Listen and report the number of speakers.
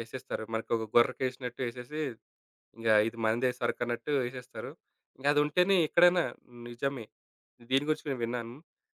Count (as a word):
one